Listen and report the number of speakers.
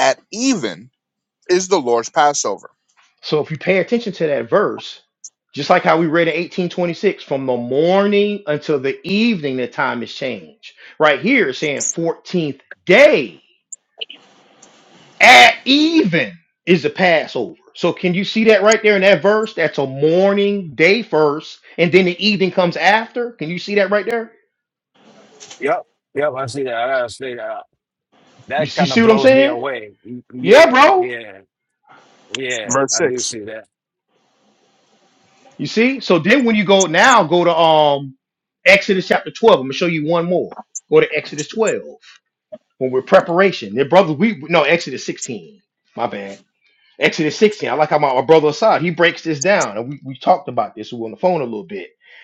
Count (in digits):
3